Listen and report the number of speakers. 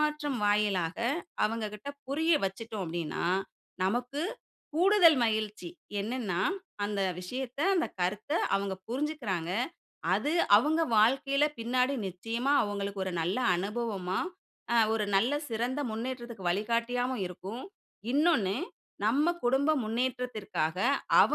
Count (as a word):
one